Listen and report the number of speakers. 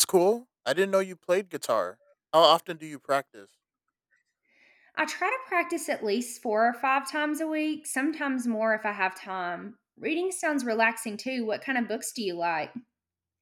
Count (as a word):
two